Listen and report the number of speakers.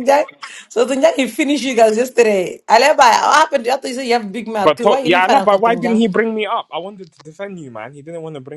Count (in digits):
2